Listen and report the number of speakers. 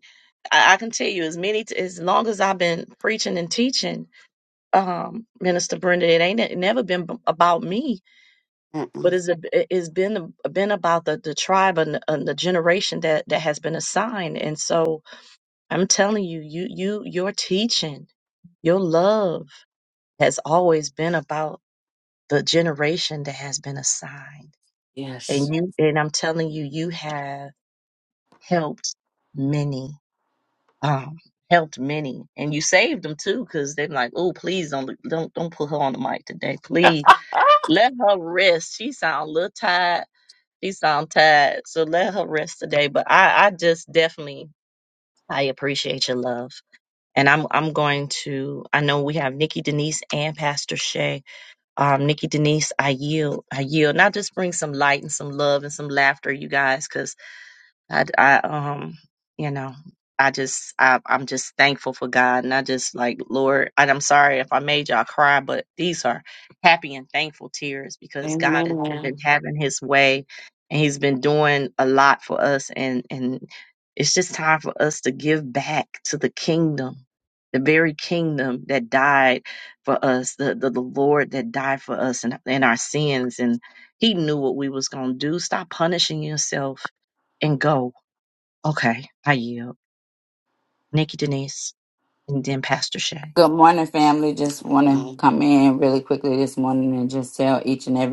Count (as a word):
three